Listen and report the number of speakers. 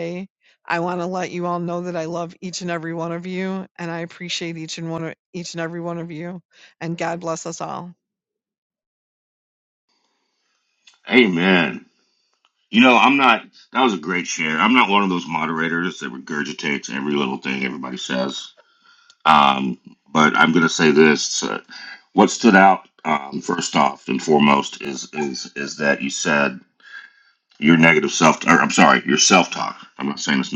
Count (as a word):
two